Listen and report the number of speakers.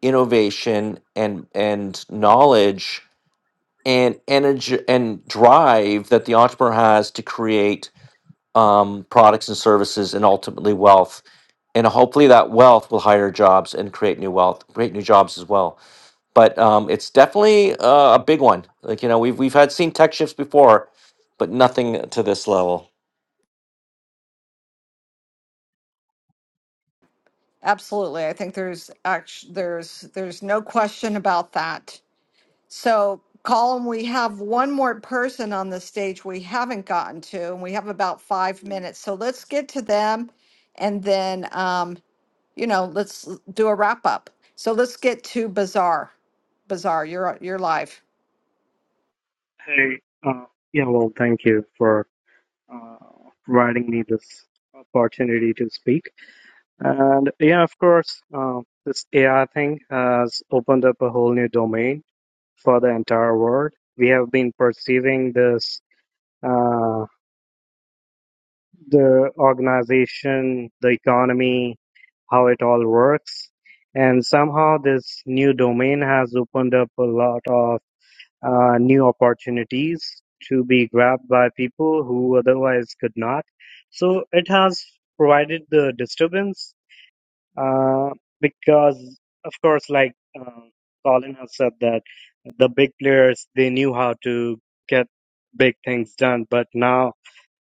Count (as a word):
three